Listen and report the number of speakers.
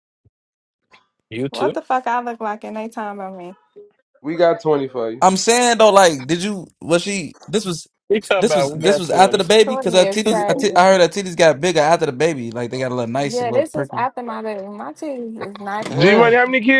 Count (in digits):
4